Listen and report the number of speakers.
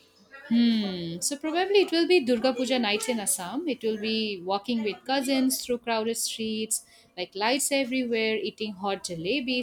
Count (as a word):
one